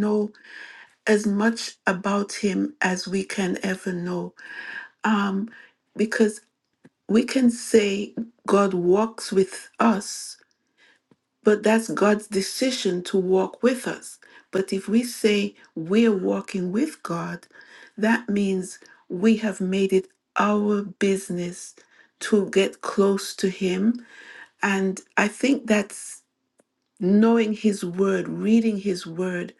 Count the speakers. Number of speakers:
1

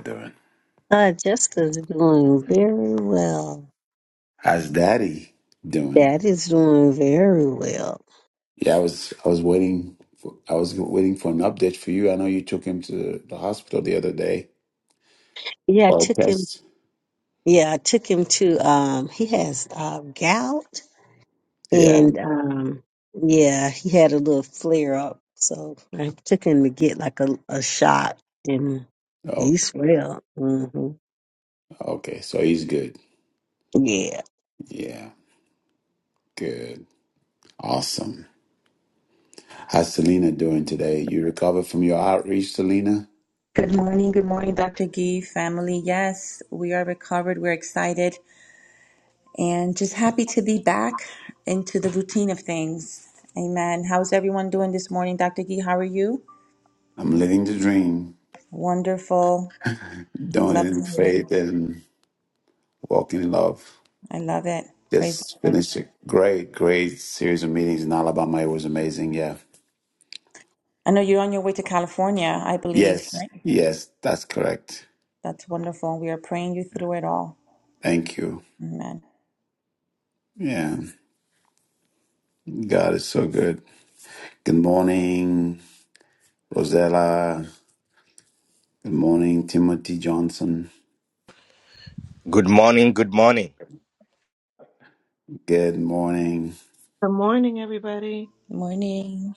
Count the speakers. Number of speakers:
5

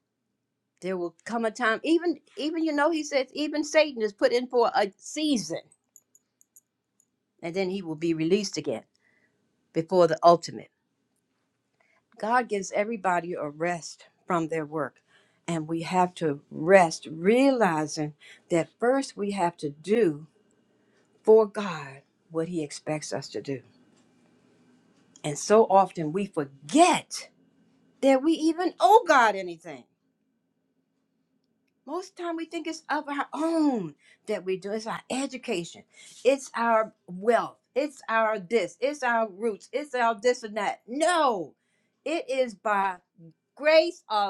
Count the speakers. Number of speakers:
1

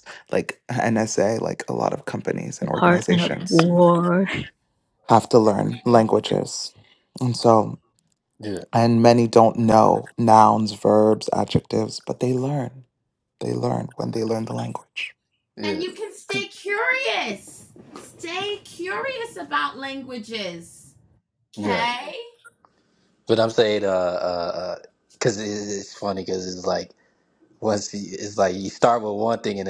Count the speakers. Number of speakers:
4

